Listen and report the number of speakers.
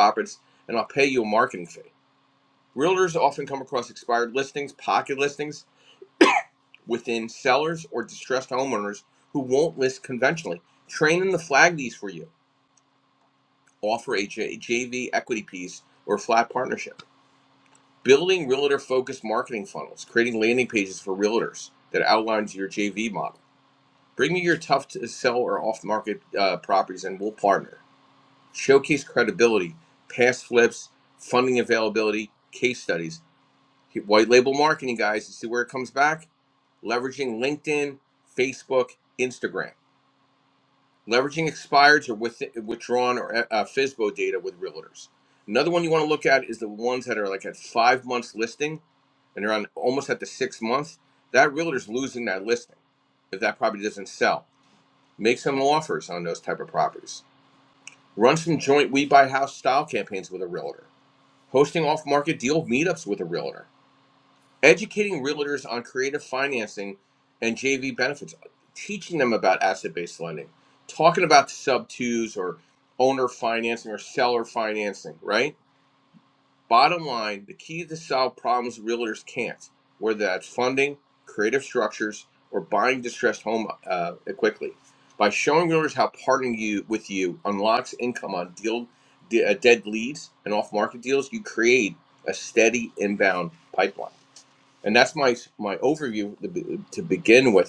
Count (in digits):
1